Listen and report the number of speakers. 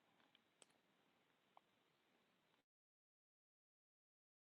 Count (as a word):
zero